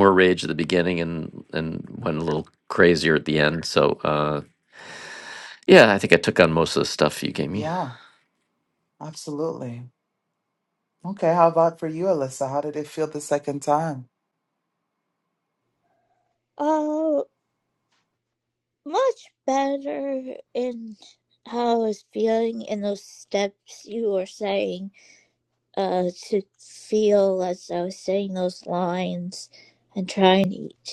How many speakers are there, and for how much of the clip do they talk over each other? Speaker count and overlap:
three, about 1%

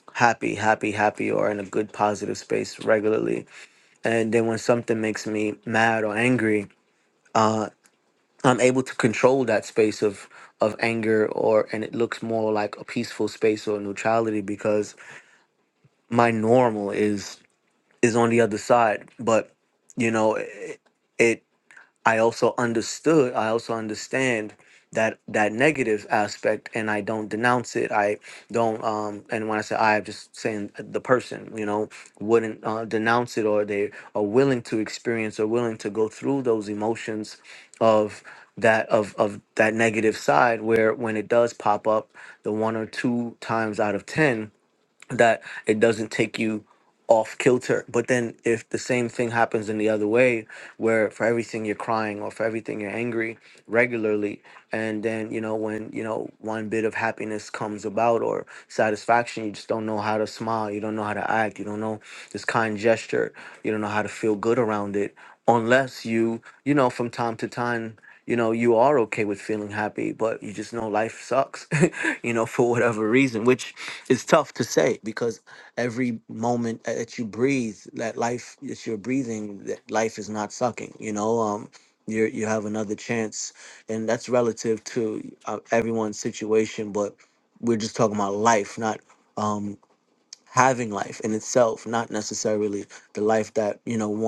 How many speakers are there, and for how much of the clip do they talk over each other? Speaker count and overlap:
one, no overlap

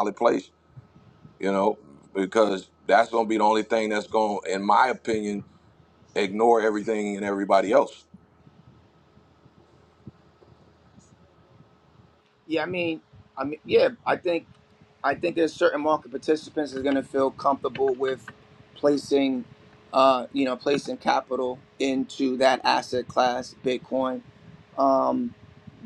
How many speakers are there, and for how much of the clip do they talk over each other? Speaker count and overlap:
two, no overlap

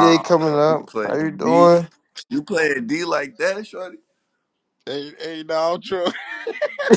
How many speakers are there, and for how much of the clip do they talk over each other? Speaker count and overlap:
three, about 20%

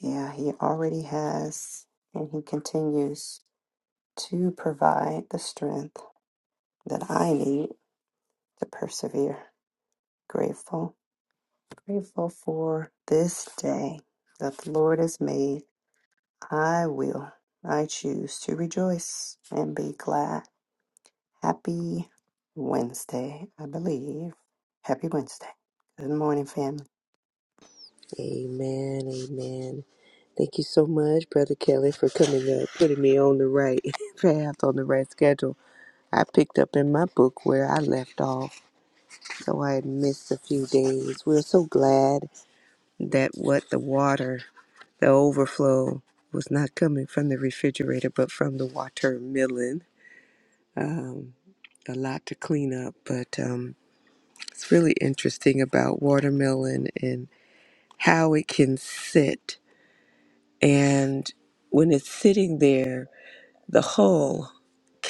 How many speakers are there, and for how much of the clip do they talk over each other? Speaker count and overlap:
two, no overlap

